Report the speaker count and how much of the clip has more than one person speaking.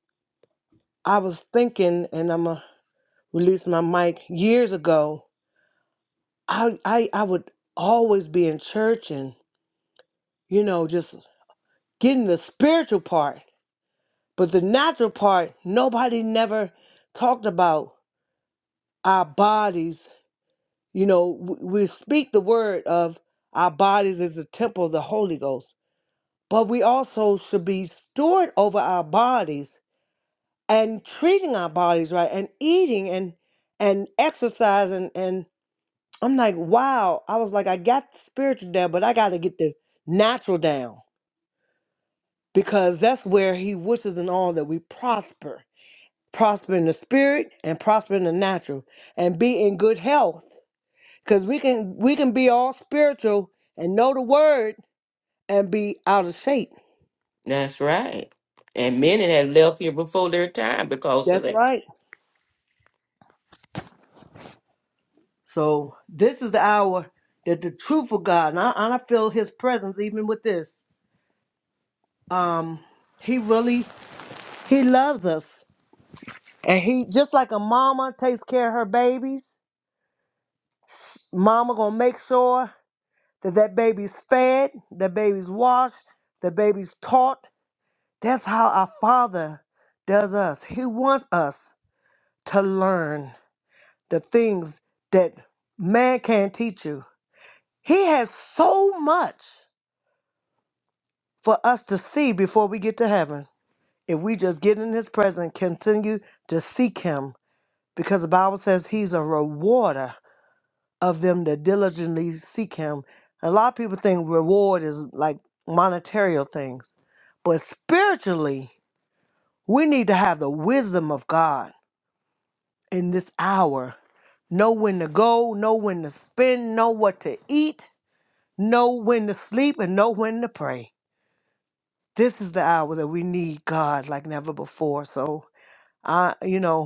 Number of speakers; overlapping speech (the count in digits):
2, under 1%